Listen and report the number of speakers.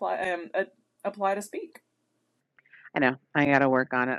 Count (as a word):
two